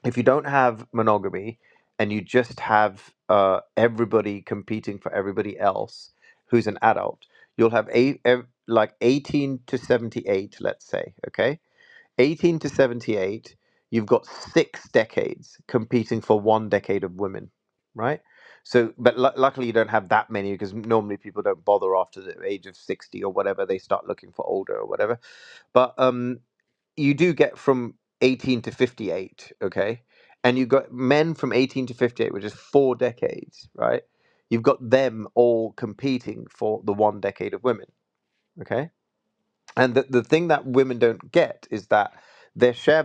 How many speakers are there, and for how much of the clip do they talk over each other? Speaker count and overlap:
one, no overlap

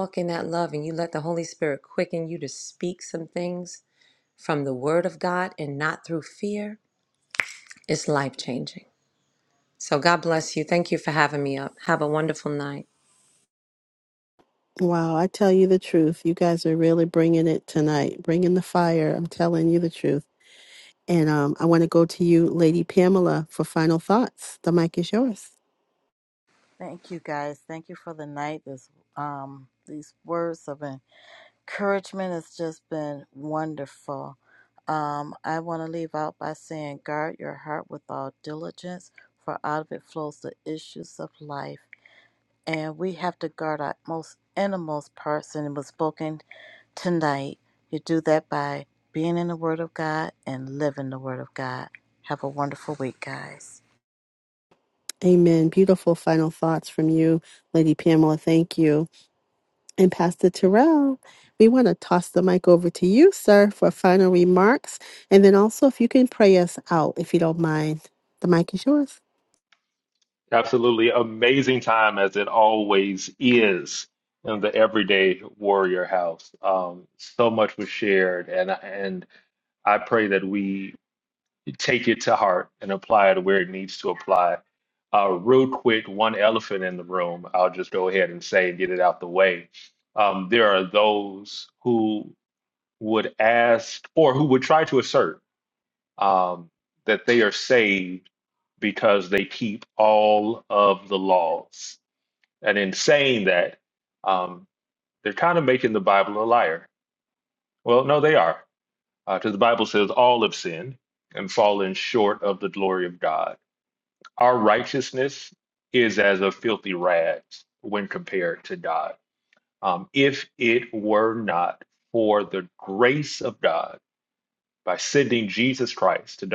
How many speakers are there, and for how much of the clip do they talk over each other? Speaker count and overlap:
four, no overlap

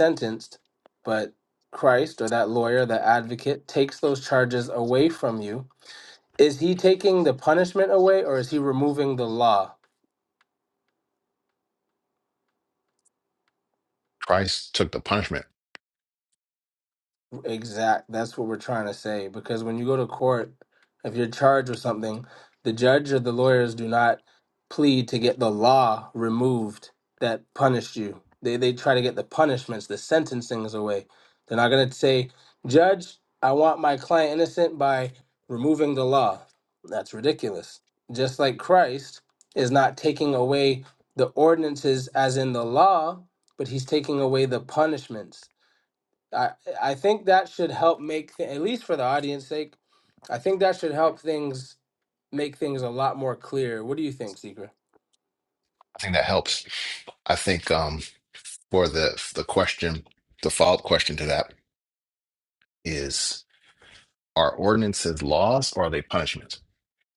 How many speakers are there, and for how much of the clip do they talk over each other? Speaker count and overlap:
two, no overlap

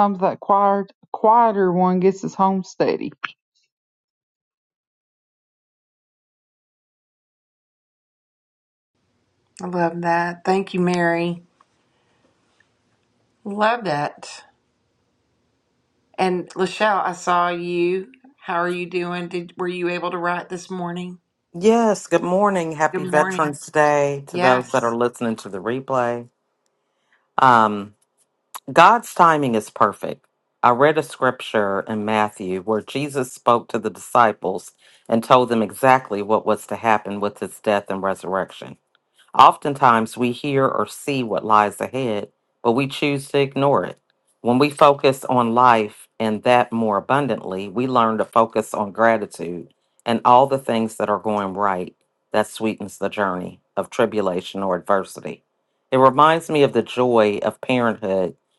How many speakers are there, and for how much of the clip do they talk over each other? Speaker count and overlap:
three, about 2%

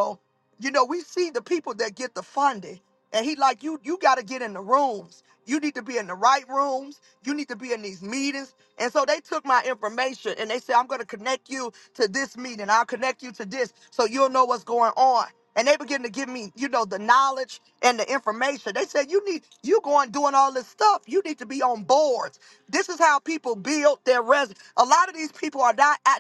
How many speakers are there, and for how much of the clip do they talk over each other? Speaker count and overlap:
one, no overlap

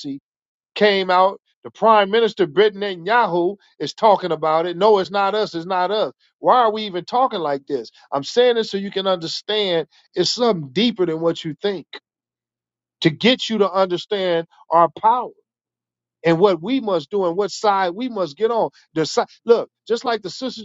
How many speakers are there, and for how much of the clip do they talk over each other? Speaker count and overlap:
one, no overlap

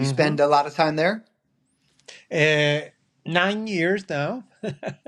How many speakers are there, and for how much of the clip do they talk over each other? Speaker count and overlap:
two, about 7%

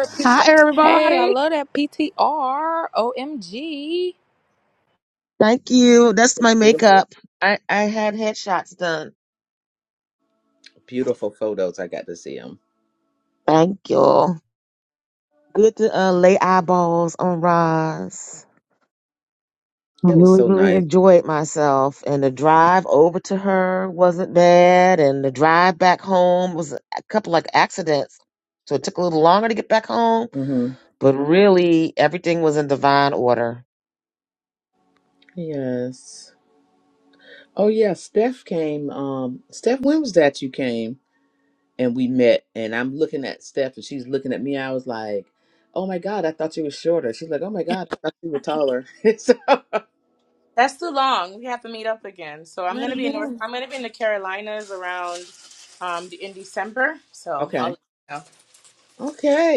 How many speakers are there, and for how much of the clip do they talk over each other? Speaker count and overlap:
four, about 5%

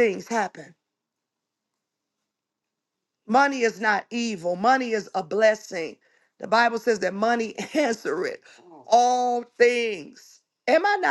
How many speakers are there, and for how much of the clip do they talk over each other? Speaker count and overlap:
one, no overlap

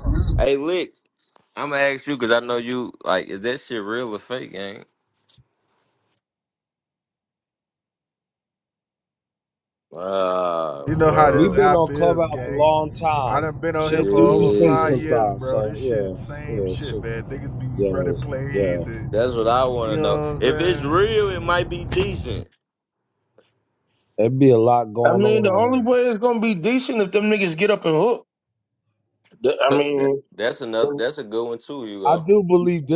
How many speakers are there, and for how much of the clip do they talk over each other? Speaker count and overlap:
four, about 26%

